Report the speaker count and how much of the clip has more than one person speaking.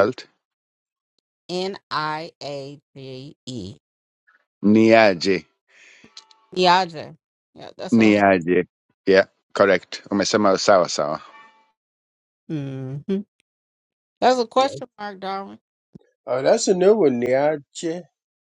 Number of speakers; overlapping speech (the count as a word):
three, about 2%